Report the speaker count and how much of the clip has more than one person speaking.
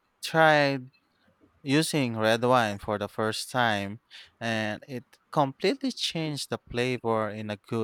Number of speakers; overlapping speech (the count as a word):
one, no overlap